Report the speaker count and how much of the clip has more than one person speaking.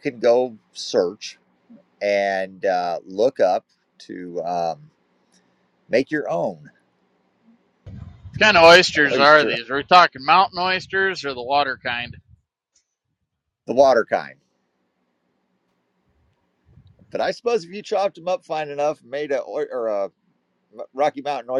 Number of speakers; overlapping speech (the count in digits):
2, about 3%